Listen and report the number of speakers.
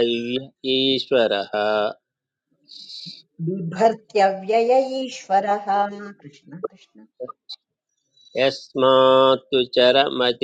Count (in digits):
2